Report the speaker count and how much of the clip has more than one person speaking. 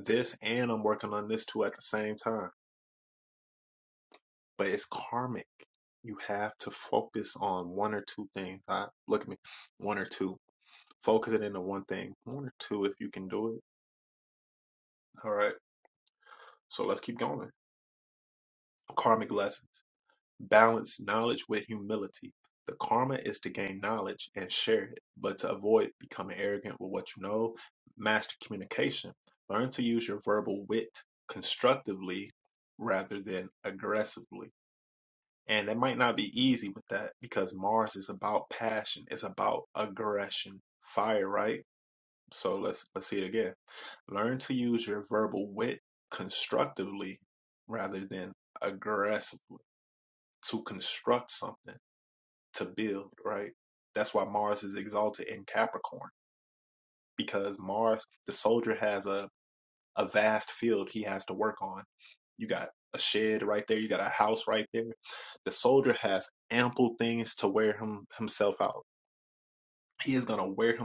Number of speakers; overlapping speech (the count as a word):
one, no overlap